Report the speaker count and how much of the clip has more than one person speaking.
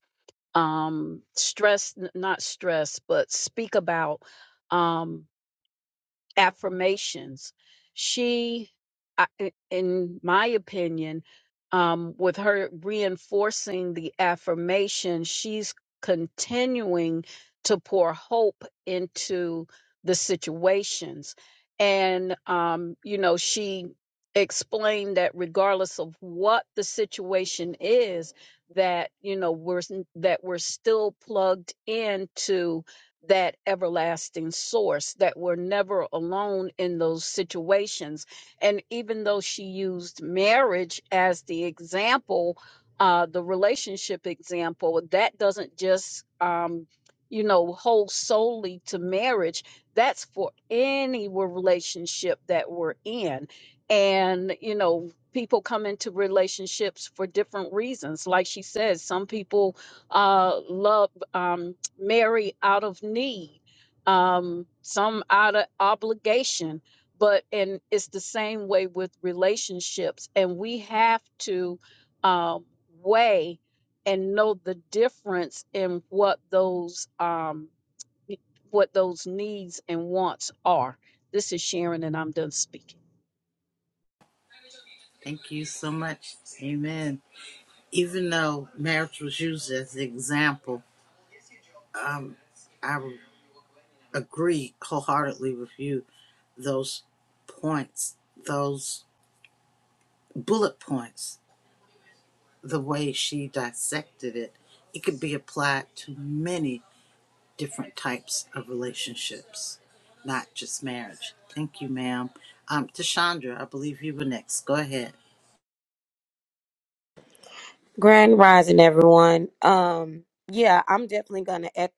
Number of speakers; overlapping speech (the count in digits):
3, no overlap